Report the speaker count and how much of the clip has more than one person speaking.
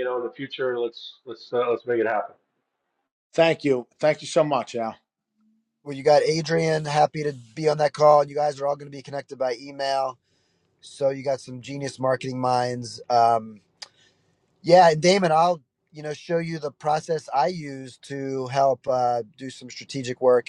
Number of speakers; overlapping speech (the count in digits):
3, no overlap